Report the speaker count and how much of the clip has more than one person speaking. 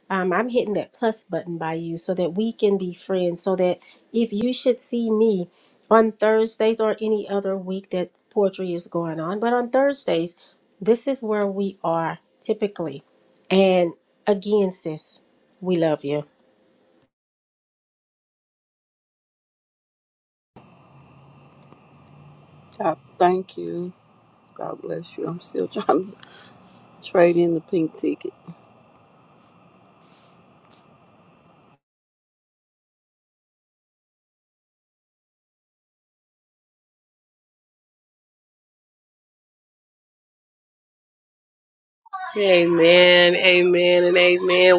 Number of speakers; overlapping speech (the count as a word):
three, no overlap